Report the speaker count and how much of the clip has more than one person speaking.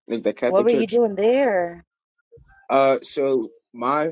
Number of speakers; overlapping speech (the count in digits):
2, about 12%